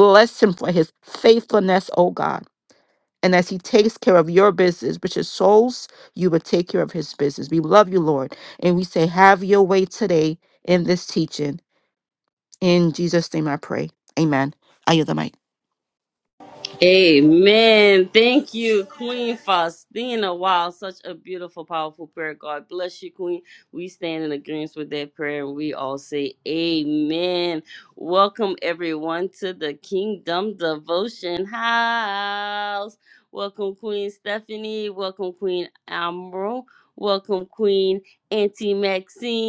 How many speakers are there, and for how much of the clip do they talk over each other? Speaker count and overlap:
two, no overlap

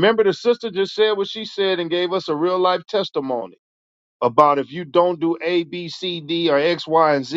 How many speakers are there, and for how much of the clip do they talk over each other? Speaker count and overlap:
one, no overlap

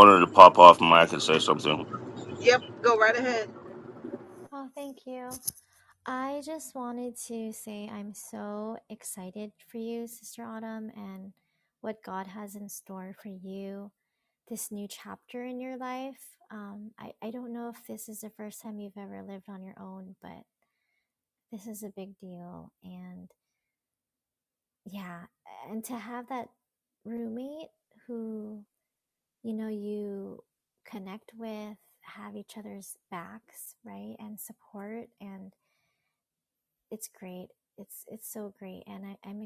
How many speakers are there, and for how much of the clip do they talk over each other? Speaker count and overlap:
three, no overlap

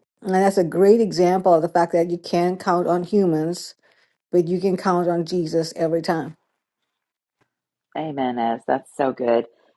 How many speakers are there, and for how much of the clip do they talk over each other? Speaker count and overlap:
two, no overlap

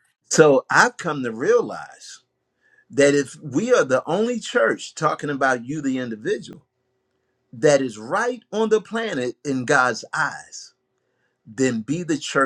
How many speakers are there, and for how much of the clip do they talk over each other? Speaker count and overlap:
one, no overlap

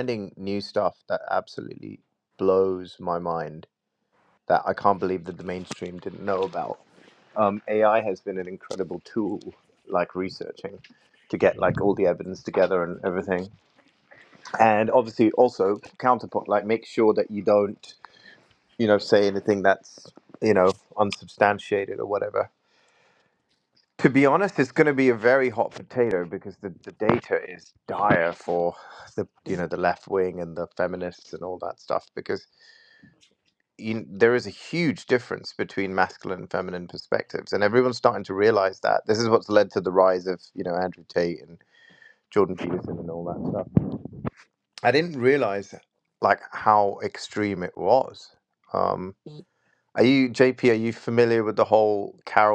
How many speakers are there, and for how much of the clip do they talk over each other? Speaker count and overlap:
one, no overlap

